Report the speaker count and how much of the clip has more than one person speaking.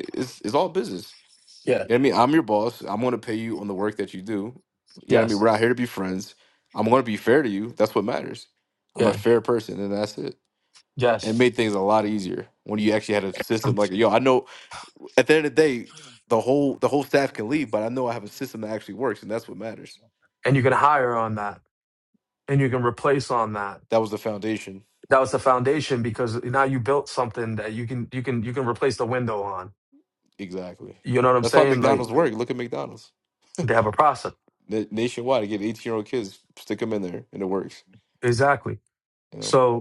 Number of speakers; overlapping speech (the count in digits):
2, about 3%